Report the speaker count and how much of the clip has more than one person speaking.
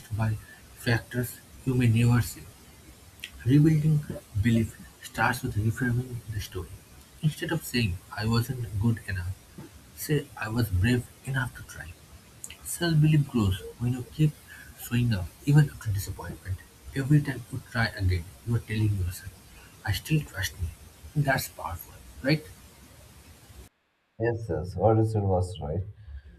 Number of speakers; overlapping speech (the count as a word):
two, no overlap